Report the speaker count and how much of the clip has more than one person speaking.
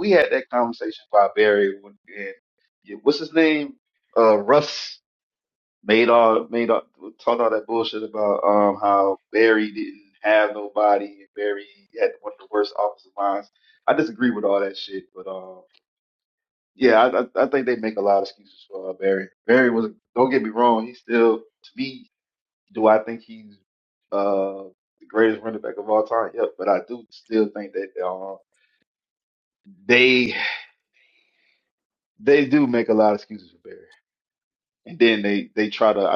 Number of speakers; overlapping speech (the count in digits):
1, no overlap